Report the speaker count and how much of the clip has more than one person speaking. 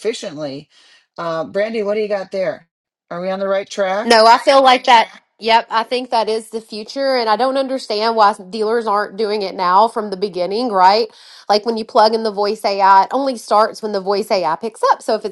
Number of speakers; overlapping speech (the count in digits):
2, no overlap